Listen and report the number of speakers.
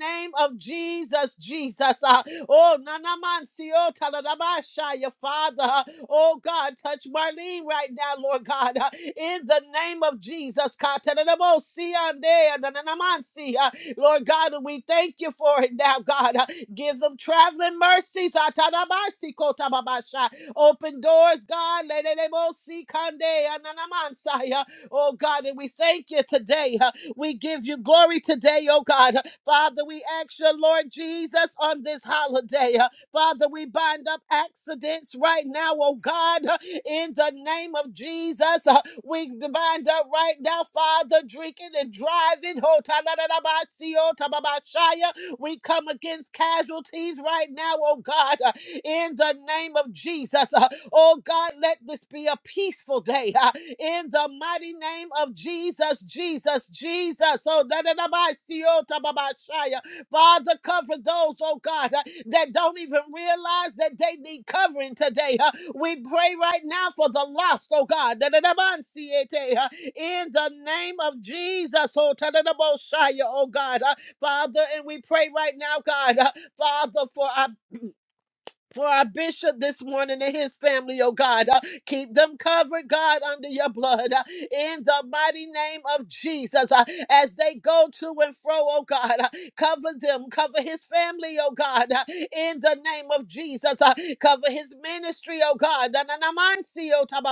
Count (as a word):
one